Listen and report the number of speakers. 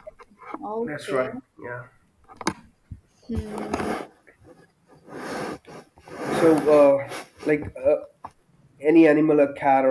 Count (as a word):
two